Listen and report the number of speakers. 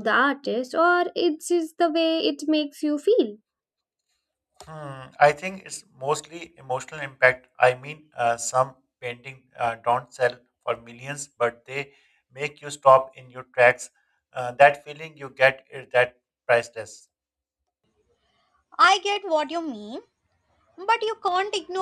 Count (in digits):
3